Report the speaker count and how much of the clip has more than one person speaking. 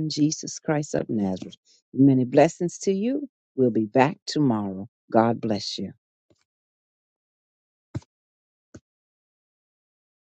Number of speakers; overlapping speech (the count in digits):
1, no overlap